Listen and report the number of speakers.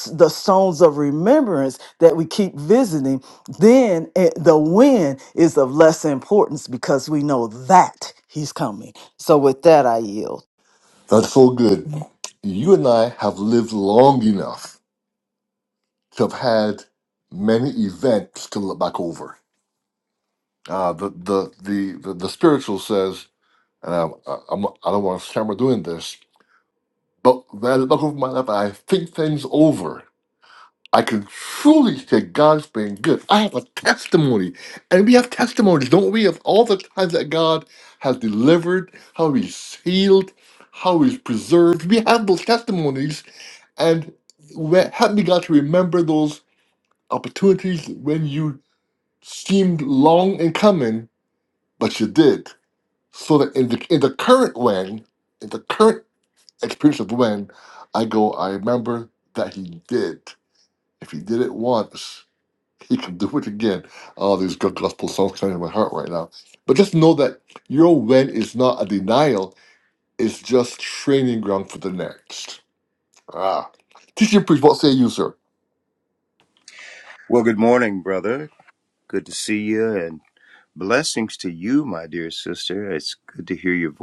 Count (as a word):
three